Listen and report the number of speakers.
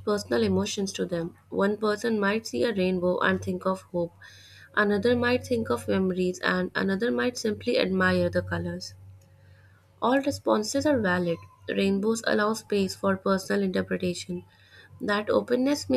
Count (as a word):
one